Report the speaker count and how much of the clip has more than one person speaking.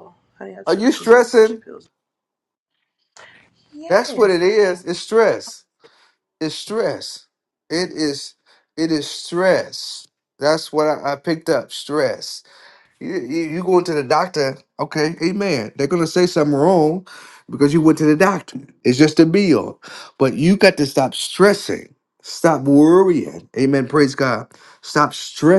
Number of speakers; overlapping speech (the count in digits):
2, about 7%